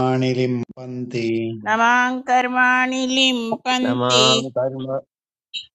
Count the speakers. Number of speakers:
3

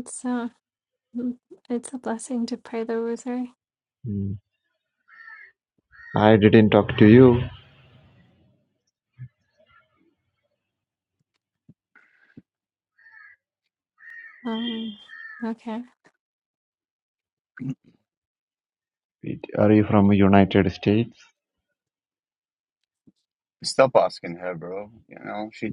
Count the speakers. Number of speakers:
3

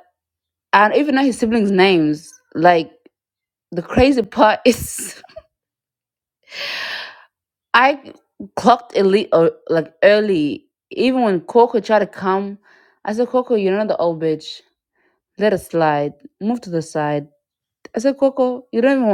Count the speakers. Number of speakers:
1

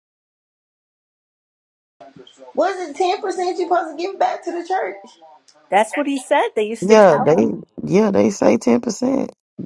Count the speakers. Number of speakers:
3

